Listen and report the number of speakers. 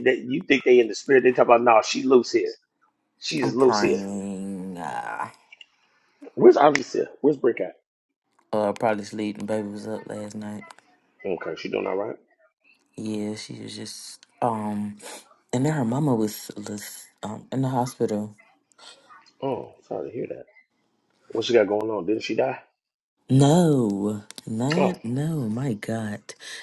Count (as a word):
two